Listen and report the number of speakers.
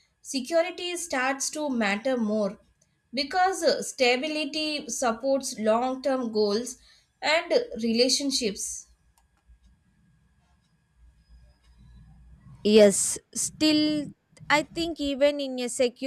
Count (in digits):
2